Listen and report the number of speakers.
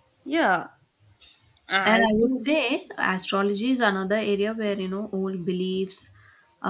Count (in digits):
2